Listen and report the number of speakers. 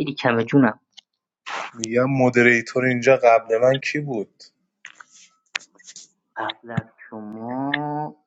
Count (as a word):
two